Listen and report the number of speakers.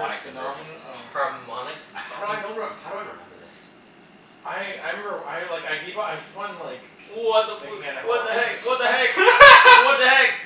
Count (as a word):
three